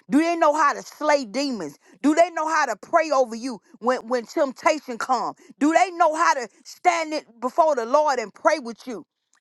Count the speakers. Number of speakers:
1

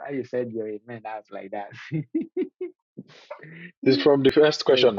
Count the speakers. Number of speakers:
2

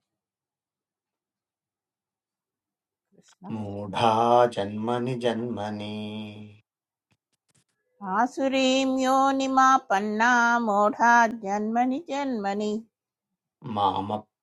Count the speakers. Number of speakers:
2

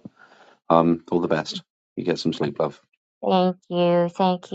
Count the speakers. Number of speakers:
2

